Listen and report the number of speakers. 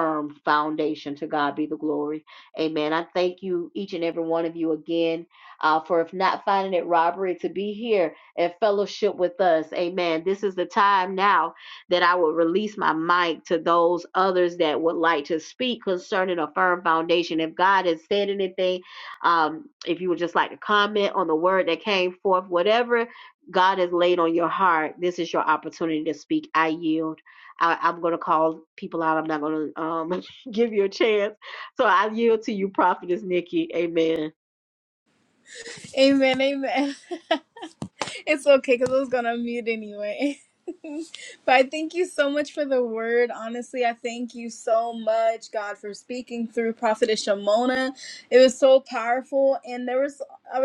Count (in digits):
2